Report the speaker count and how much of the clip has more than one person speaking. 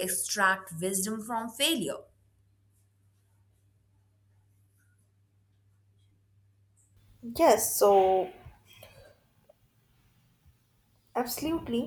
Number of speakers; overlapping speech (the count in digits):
2, no overlap